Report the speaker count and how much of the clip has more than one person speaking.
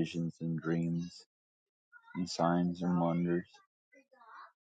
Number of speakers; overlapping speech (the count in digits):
1, no overlap